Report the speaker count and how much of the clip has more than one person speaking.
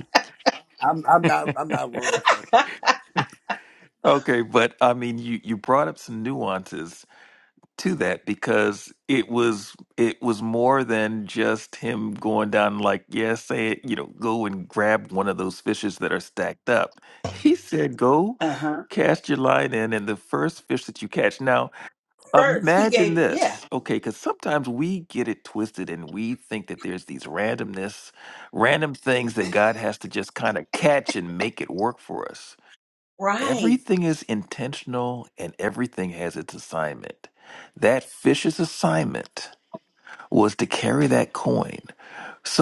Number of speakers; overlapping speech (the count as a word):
three, about 4%